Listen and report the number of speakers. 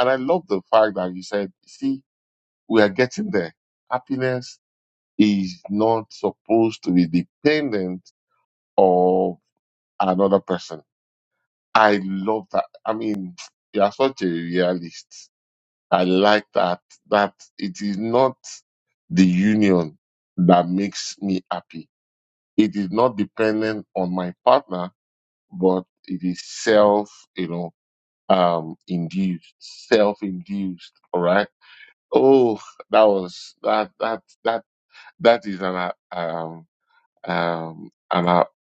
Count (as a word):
one